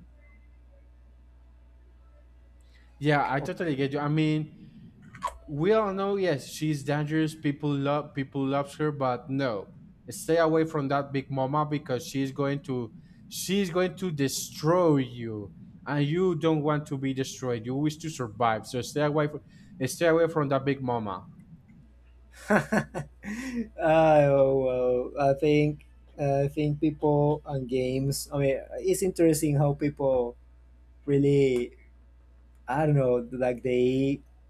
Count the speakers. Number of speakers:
2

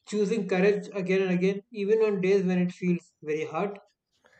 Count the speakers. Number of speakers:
1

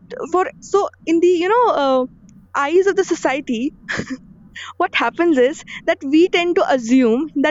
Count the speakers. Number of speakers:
1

